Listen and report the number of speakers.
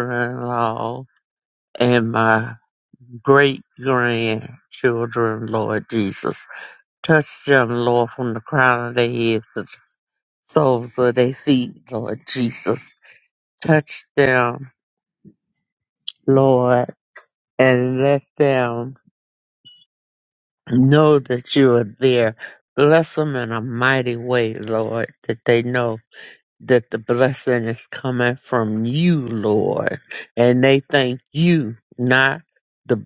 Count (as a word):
one